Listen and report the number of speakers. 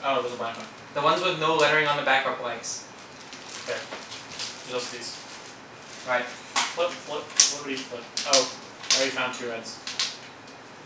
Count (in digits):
2